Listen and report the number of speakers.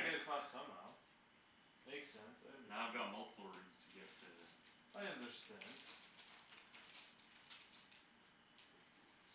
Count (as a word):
two